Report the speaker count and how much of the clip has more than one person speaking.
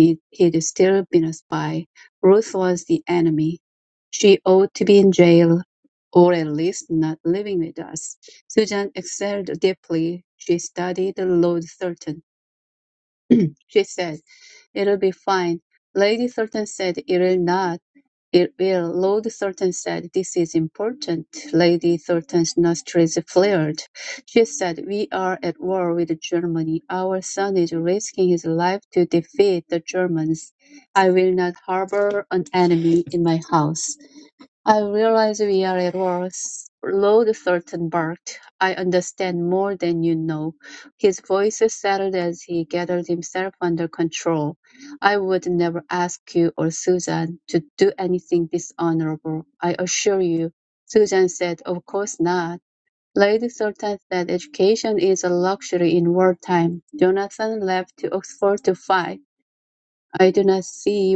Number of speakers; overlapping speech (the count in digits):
1, no overlap